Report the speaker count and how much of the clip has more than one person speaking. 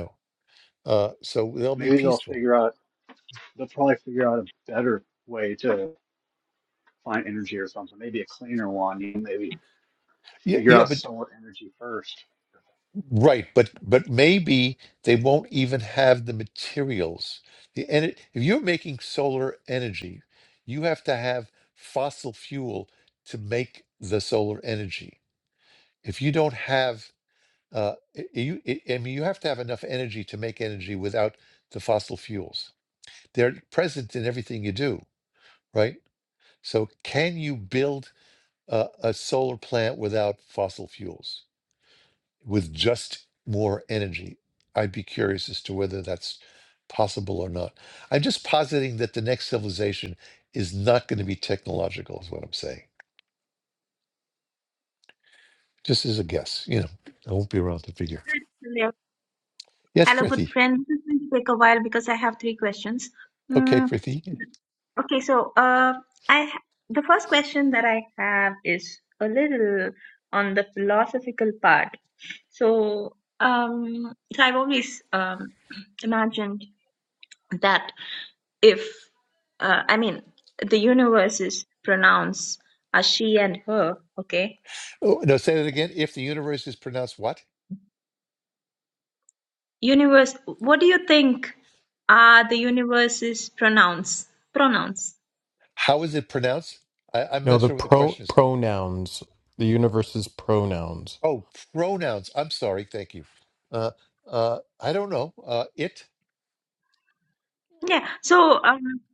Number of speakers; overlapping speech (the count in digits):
4, about 3%